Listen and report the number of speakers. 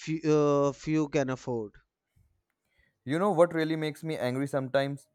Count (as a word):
two